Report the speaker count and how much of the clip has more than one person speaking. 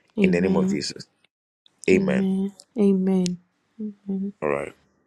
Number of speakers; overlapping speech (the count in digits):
2, about 18%